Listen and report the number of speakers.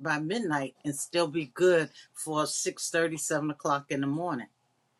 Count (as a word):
one